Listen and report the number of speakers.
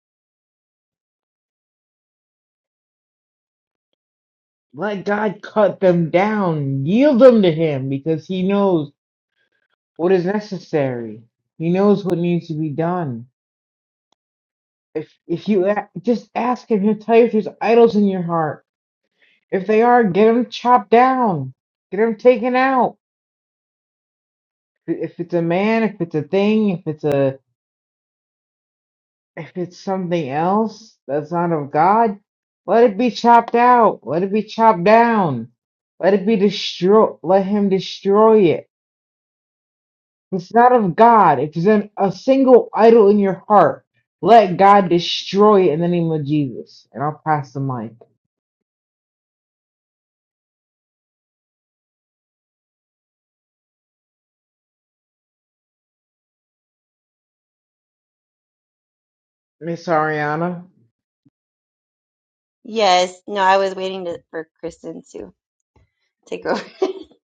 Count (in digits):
2